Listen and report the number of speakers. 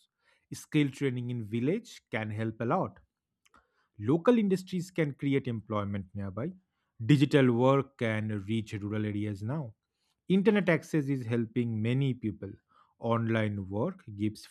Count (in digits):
1